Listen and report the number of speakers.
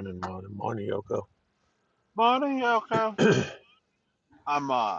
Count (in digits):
2